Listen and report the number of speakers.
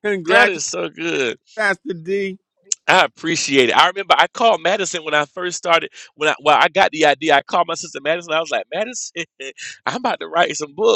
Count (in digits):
2